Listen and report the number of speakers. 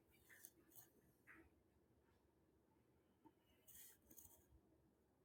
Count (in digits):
0